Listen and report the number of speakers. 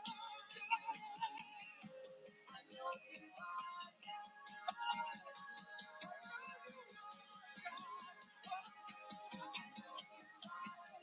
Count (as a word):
zero